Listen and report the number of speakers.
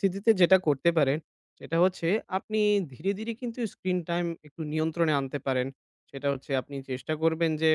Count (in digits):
1